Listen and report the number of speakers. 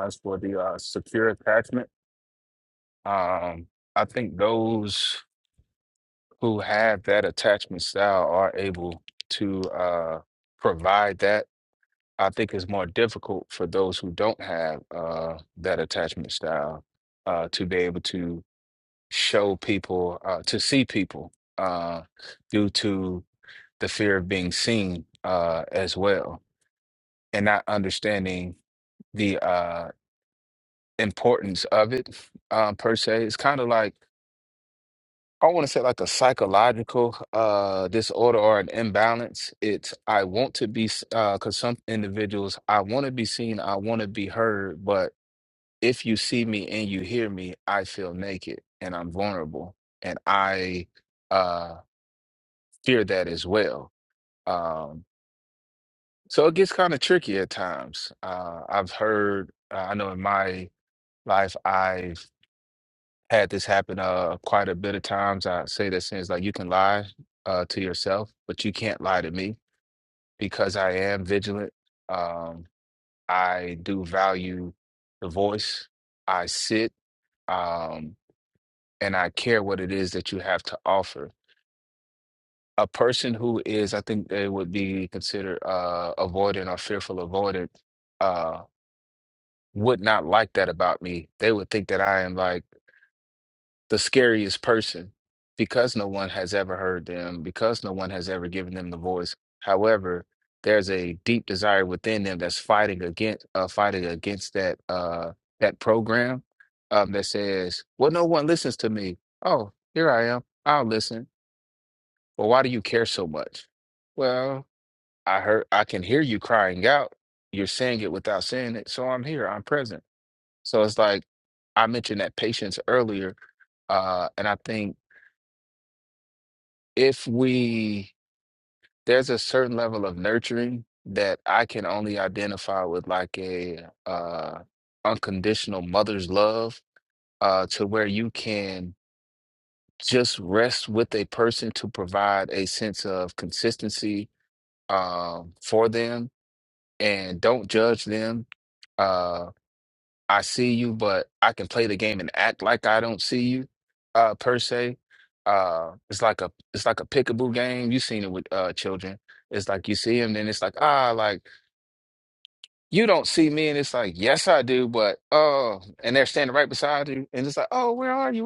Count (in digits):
1